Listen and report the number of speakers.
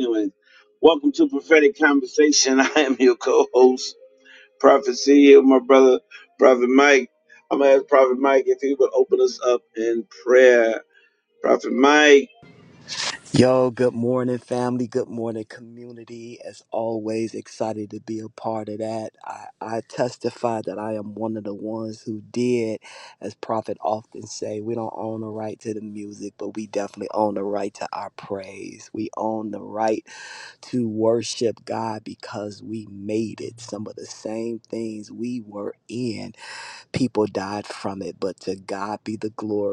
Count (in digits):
2